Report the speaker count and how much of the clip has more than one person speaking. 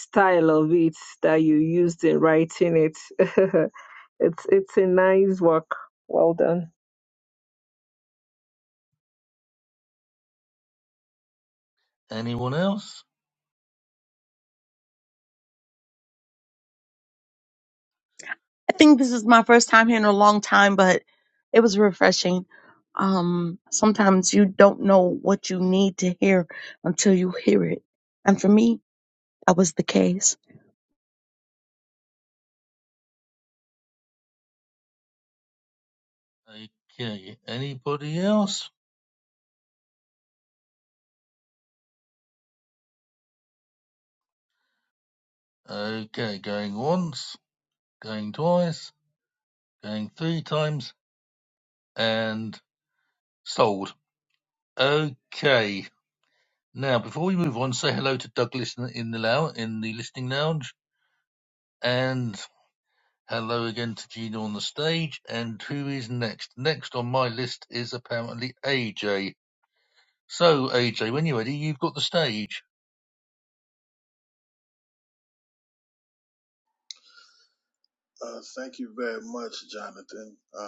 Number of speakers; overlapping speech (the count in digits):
4, no overlap